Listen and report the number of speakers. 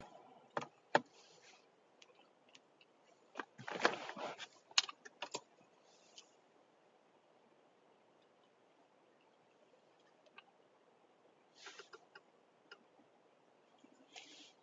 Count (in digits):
0